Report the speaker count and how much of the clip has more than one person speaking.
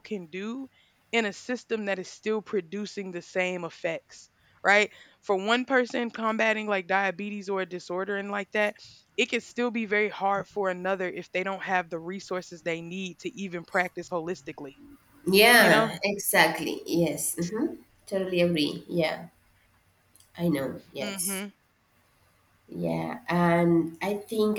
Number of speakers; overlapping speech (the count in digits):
2, about 2%